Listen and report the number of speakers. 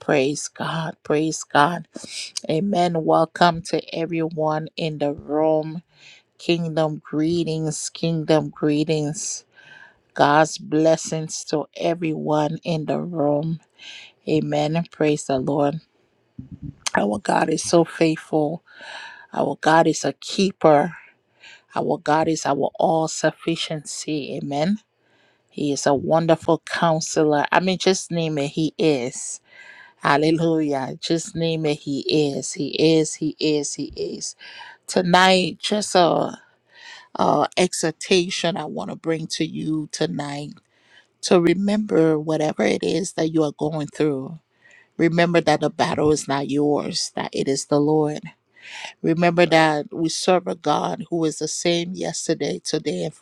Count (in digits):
1